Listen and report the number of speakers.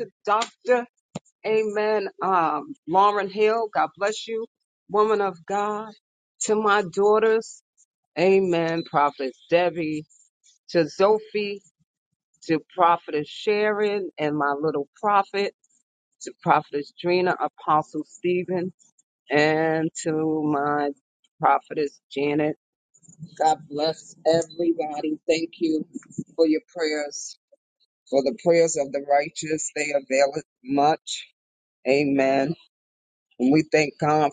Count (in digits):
1